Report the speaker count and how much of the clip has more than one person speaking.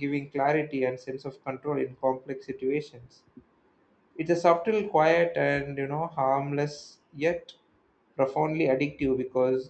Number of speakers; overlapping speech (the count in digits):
1, no overlap